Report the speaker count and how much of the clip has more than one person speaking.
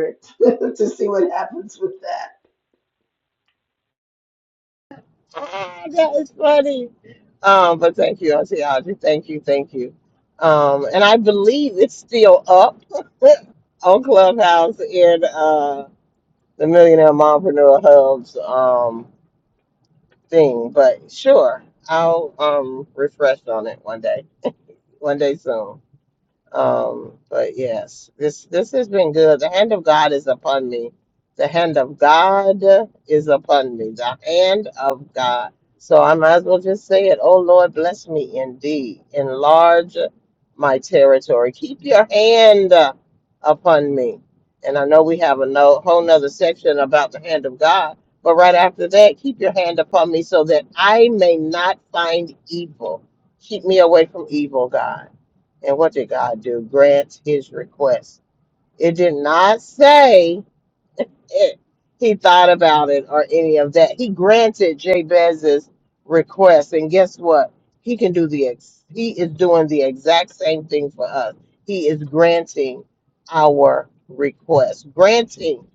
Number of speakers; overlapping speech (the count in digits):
2, no overlap